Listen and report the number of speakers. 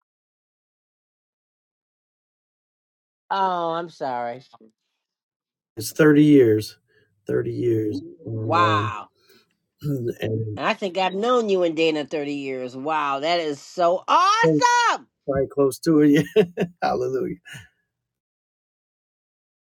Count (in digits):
2